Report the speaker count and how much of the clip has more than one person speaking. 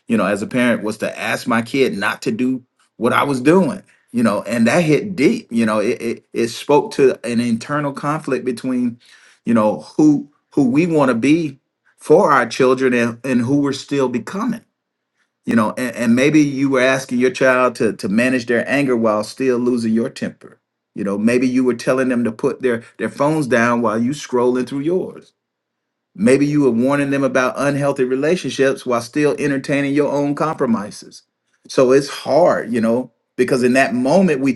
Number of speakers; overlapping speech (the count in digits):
1, no overlap